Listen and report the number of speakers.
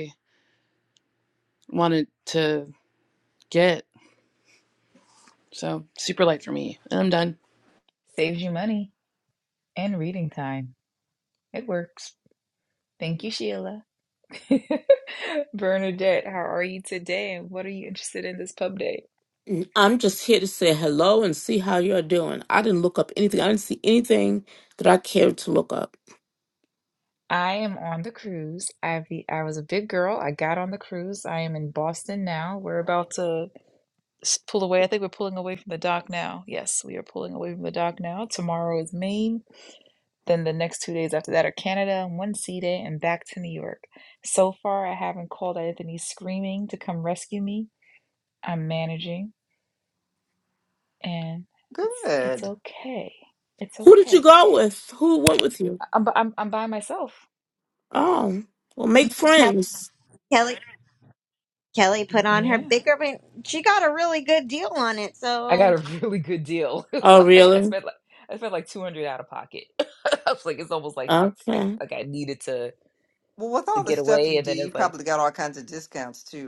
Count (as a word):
five